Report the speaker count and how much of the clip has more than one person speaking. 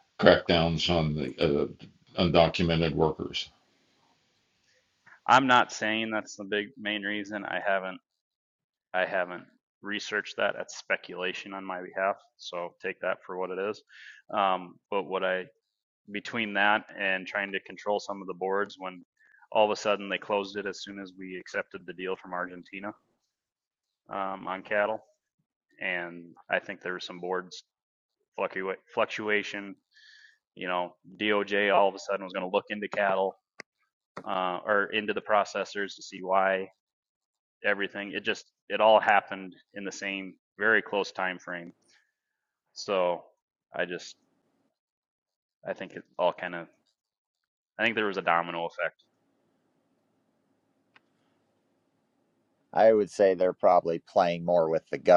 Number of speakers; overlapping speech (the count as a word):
three, no overlap